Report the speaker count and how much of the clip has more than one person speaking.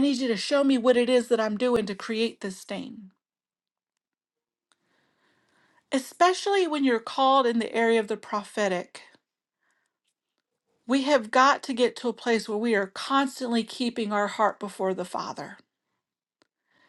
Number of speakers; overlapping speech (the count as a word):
one, no overlap